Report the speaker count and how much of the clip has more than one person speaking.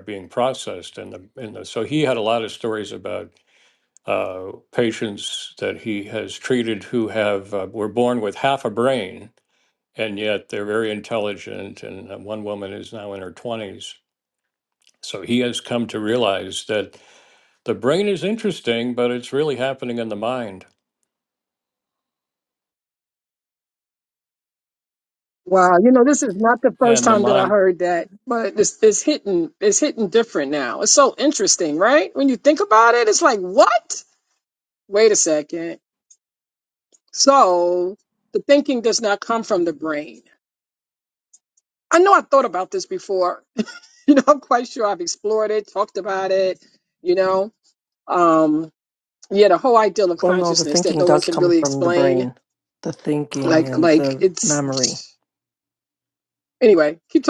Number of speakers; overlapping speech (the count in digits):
3, about 7%